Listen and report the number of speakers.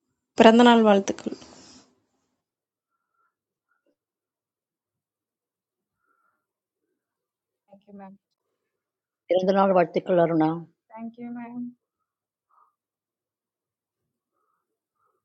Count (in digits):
3